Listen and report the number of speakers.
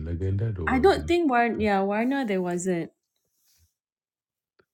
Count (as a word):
two